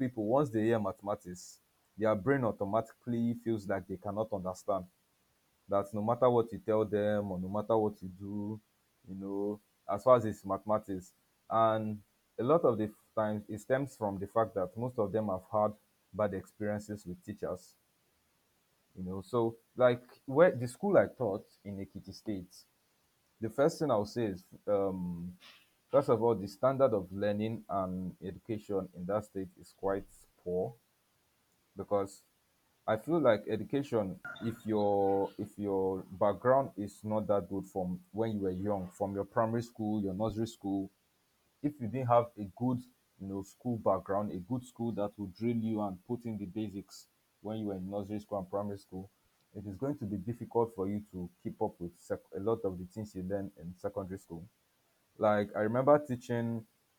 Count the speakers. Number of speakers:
1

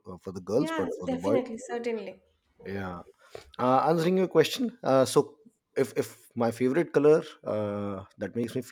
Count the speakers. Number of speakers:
2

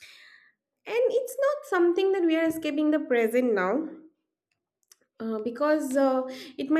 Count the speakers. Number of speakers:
1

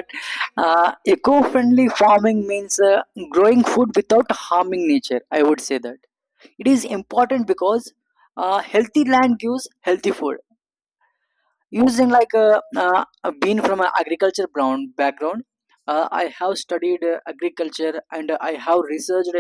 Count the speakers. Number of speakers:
1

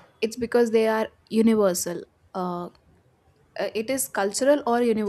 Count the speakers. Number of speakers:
1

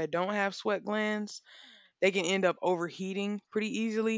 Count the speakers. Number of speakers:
1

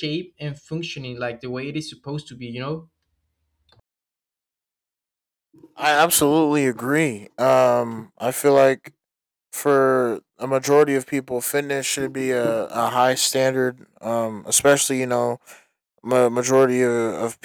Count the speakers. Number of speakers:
2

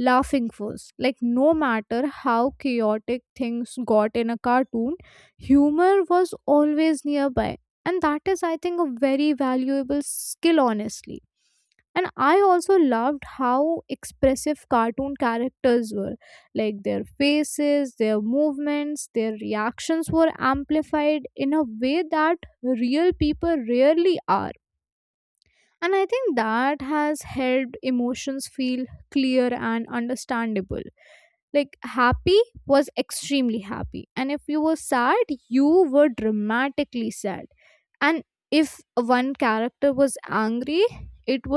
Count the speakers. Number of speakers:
1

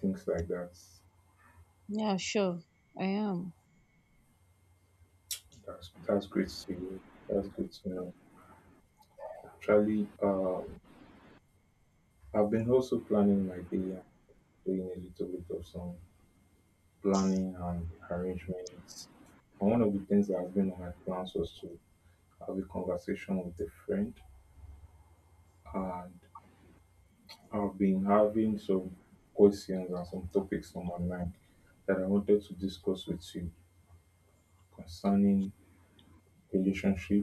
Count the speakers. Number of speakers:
2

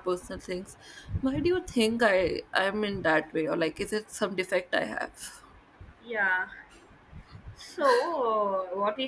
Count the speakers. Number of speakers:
2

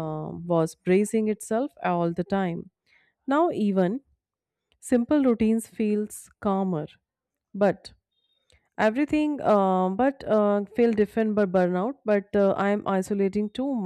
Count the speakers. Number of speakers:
1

